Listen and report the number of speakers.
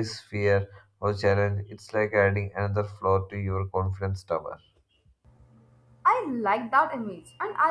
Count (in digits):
2